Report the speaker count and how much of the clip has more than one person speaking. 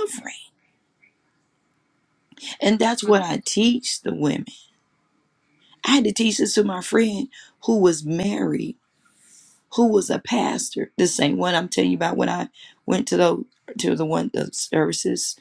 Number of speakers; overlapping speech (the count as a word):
one, no overlap